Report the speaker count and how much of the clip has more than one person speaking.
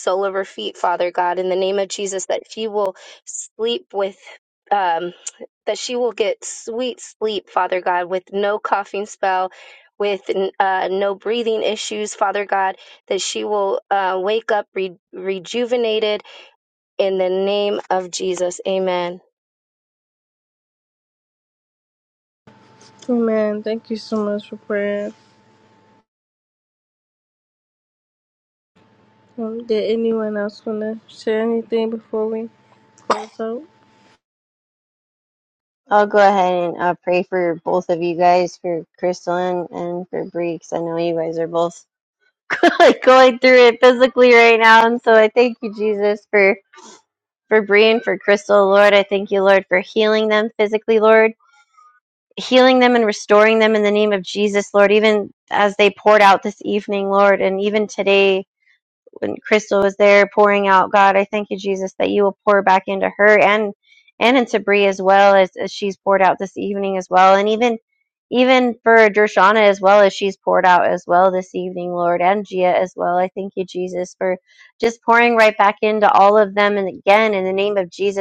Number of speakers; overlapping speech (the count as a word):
three, no overlap